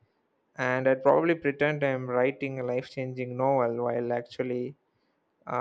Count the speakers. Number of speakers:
one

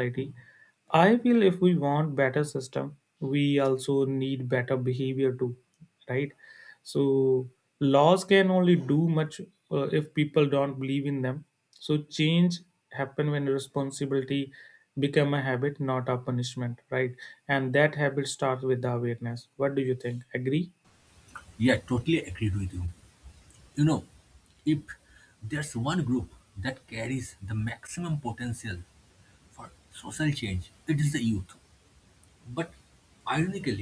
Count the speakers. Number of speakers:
two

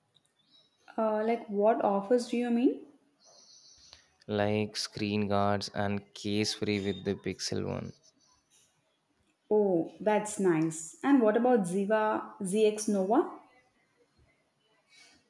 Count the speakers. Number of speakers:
two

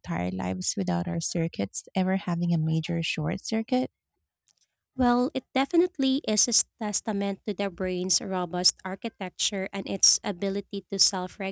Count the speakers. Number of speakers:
two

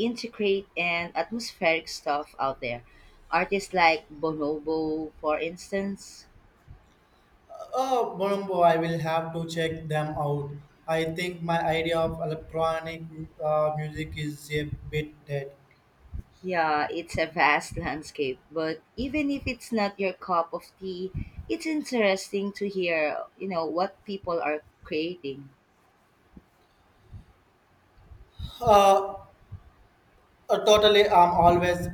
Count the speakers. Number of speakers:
two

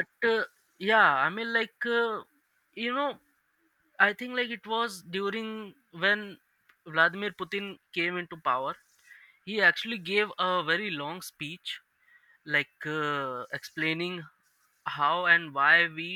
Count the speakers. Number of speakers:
one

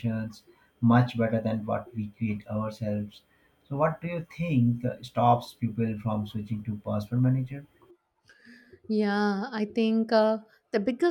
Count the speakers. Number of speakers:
two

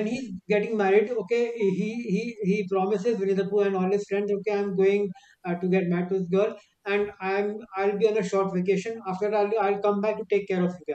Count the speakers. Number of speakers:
one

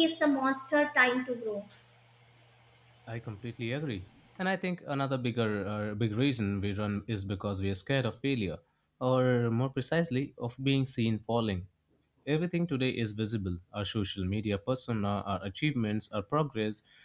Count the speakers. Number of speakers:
two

